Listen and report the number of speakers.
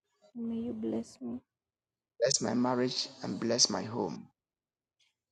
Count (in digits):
2